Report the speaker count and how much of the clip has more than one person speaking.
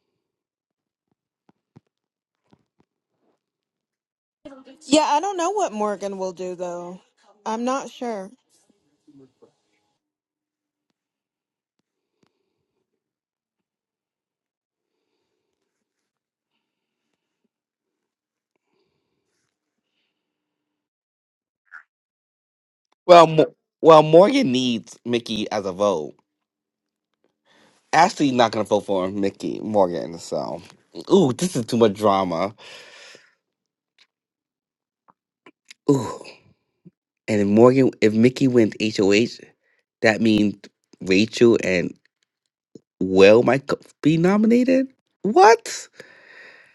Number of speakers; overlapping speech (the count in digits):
2, no overlap